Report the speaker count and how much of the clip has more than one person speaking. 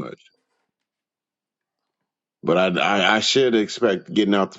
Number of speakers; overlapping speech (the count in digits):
1, no overlap